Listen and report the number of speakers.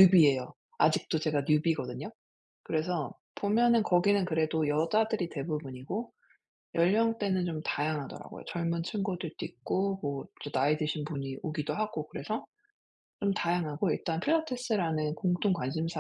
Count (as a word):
one